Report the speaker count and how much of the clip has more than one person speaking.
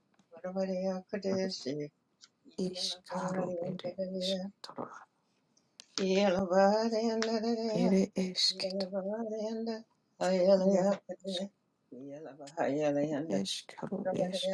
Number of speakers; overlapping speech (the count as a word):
two, about 18%